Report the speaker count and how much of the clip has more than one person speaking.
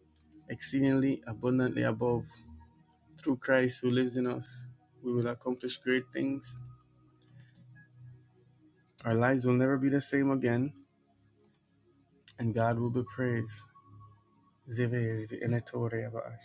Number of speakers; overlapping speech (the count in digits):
1, no overlap